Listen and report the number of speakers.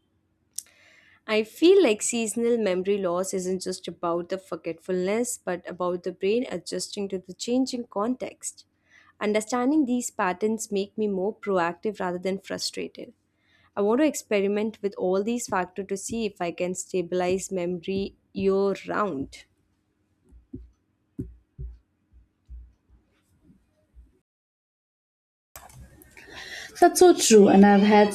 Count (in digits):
2